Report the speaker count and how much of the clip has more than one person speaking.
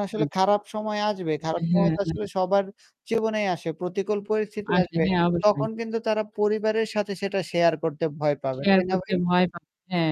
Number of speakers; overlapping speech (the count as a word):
two, about 21%